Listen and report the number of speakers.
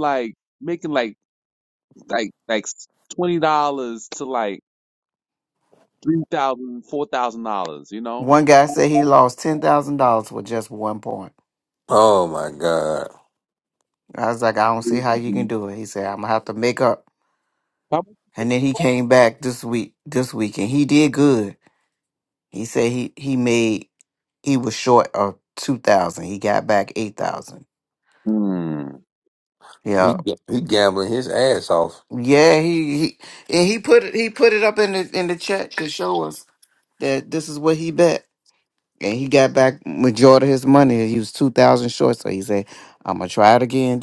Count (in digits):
3